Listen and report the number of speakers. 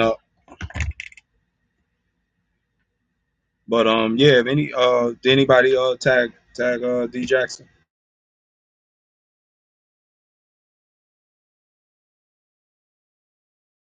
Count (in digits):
1